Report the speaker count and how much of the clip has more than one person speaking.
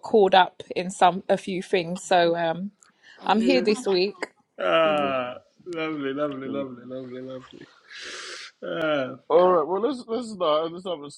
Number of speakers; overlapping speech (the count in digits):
3, about 8%